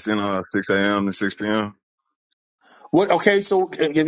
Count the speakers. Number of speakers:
two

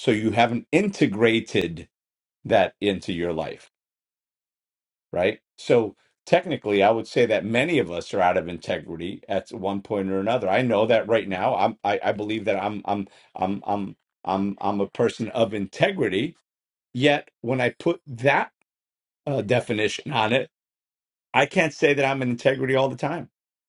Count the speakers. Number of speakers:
one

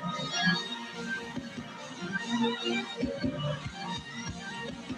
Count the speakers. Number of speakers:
zero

